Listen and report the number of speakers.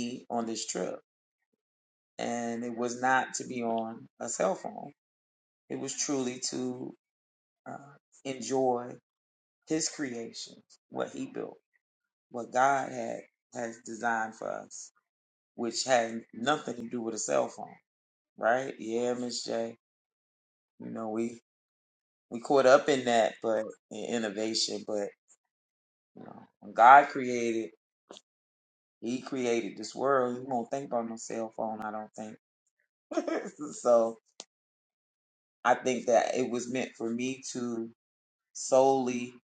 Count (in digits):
1